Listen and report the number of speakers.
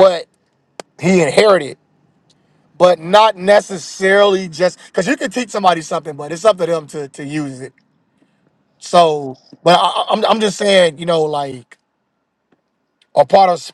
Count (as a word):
one